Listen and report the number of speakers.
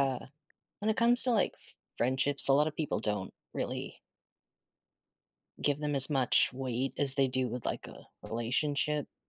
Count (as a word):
one